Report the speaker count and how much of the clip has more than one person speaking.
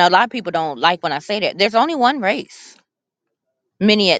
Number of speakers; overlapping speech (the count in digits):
1, no overlap